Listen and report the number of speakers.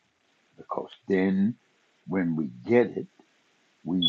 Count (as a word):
one